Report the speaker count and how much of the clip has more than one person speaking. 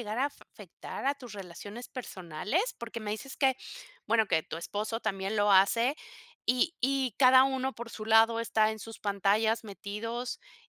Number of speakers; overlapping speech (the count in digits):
1, no overlap